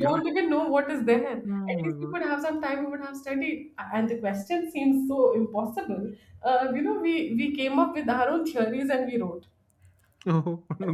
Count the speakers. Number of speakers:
2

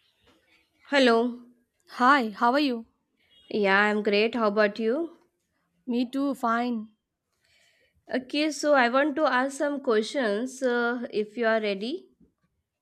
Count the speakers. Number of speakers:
2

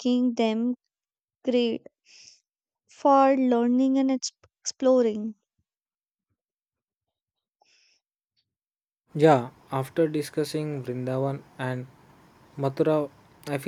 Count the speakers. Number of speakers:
2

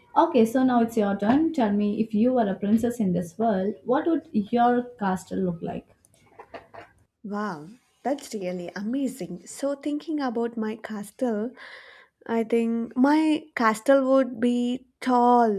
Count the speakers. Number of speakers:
2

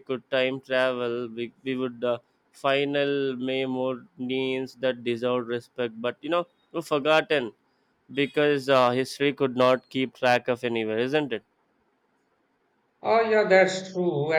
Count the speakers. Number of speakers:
2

